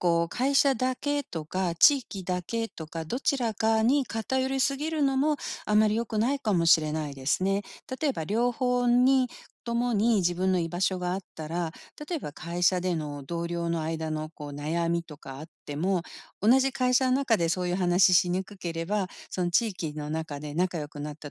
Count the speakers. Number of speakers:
1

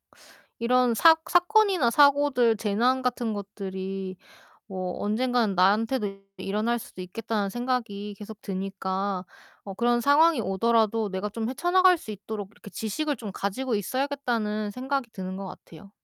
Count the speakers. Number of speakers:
1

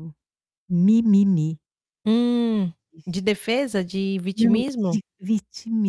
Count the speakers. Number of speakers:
2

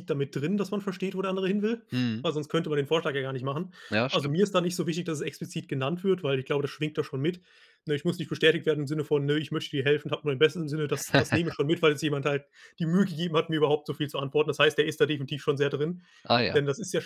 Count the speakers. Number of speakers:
2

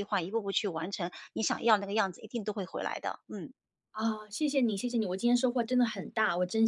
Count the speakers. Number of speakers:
2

